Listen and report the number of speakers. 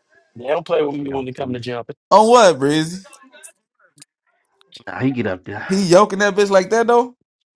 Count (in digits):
3